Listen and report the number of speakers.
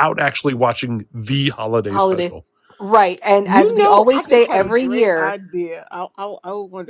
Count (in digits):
3